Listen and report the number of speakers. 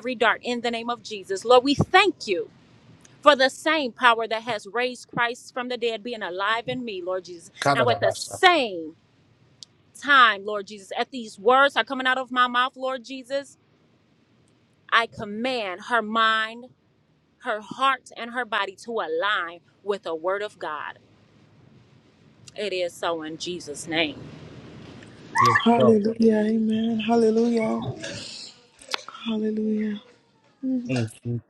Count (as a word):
three